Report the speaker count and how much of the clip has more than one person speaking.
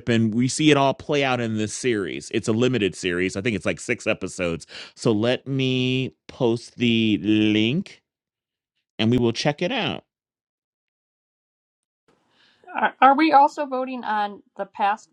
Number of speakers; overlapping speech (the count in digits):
2, no overlap